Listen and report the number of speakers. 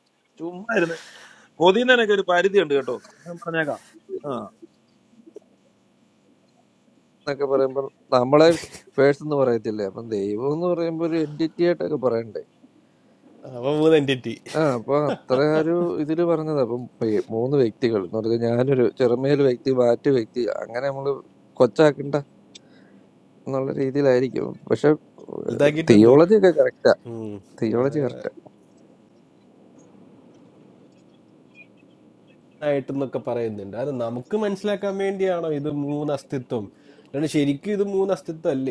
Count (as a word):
three